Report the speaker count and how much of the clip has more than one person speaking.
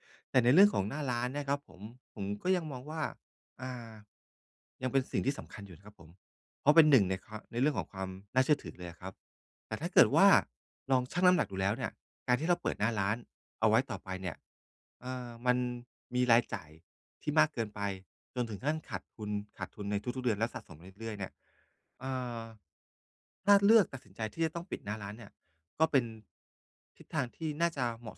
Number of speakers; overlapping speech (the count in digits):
1, no overlap